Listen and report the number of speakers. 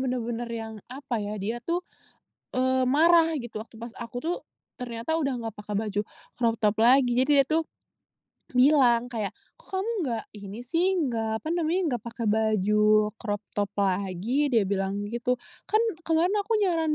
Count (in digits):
1